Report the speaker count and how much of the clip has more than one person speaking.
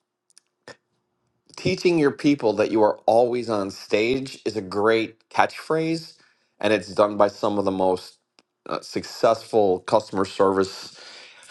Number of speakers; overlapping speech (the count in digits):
1, no overlap